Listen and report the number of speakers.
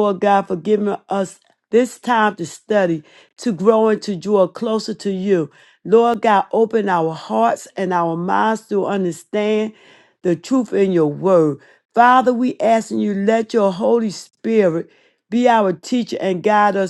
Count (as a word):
one